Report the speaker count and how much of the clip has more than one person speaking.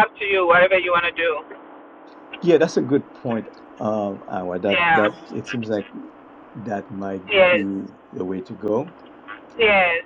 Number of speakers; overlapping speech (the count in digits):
2, about 6%